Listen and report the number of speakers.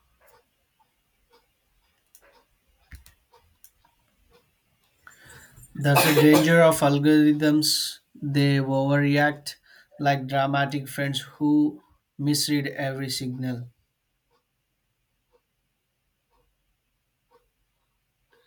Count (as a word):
one